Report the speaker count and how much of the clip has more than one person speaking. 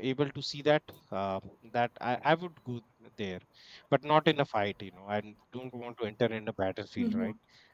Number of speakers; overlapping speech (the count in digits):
1, no overlap